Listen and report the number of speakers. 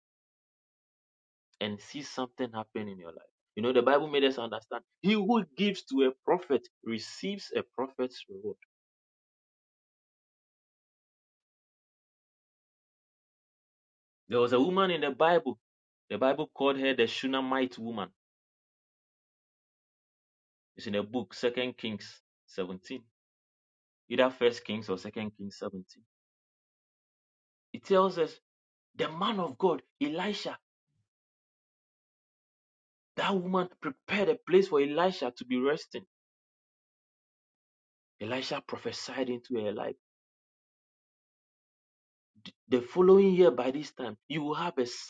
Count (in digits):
1